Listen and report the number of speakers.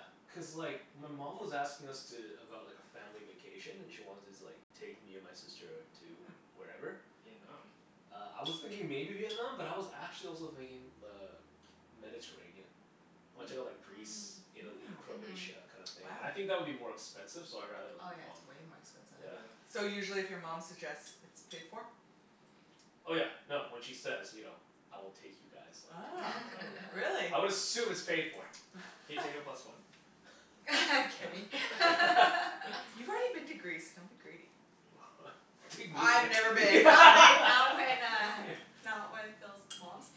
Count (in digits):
4